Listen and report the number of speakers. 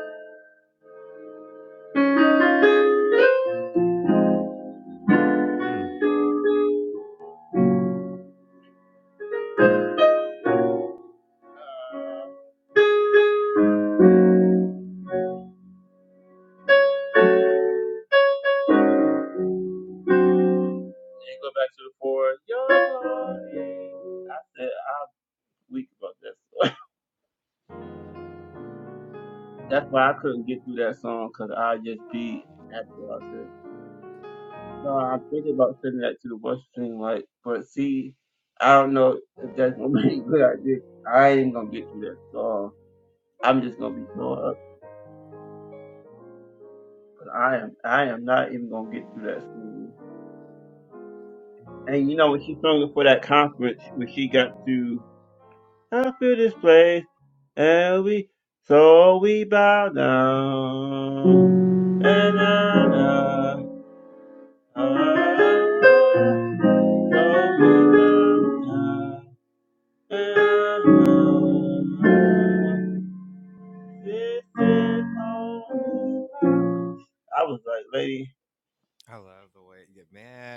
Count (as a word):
two